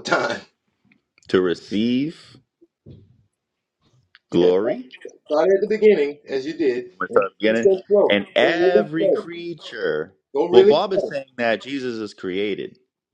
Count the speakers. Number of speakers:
2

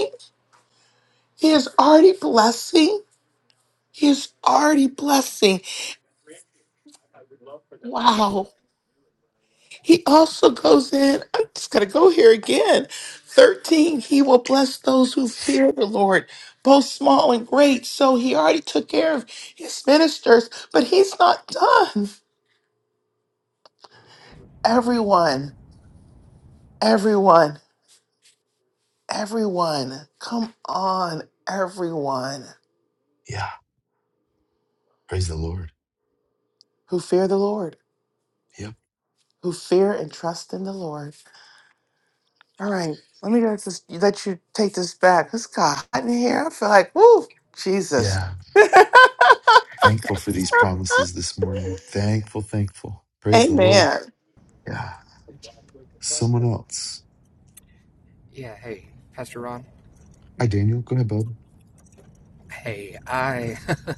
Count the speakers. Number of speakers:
3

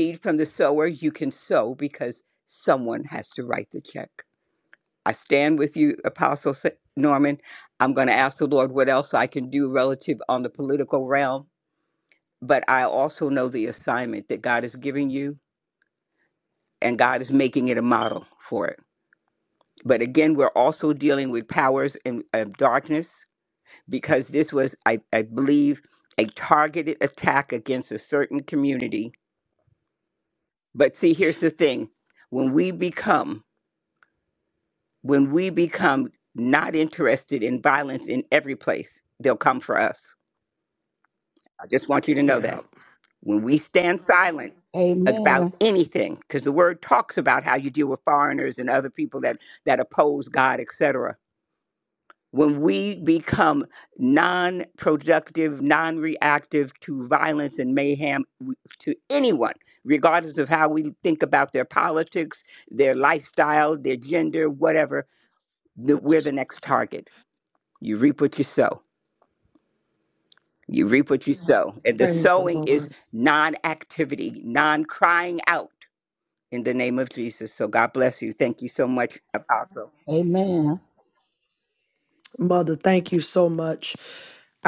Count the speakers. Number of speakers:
3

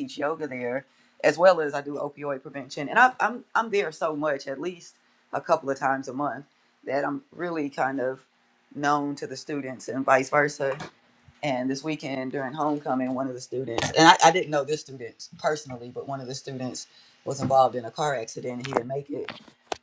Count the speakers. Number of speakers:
1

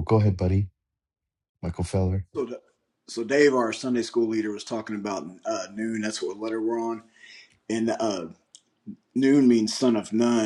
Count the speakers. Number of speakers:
2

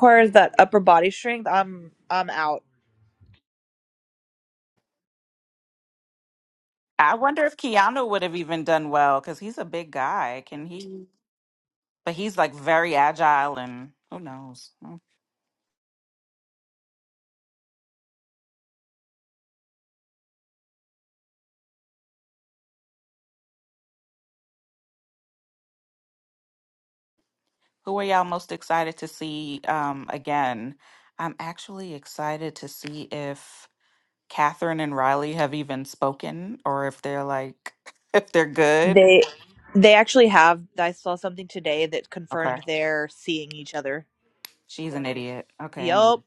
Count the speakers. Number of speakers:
2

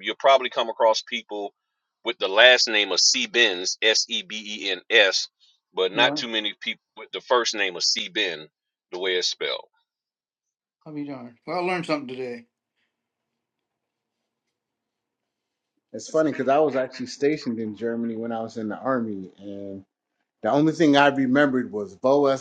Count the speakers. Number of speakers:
3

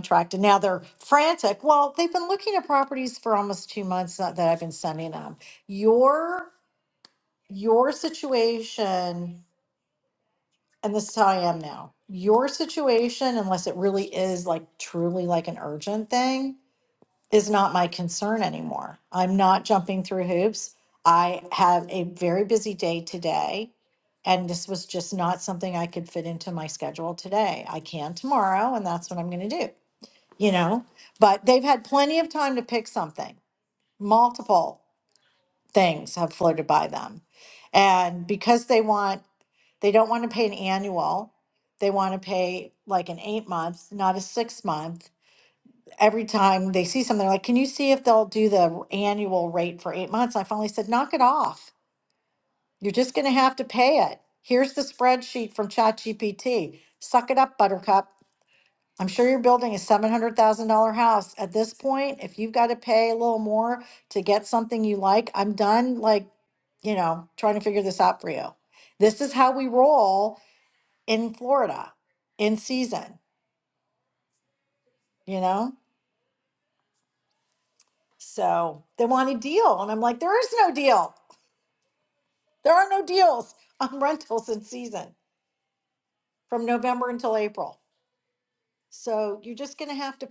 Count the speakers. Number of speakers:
1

